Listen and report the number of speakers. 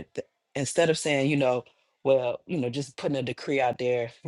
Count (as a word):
one